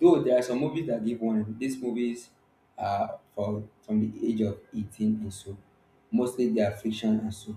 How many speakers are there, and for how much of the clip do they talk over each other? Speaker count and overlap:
one, no overlap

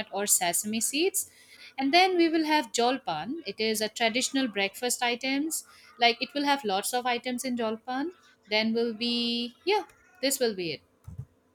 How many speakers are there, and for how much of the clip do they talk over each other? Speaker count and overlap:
one, no overlap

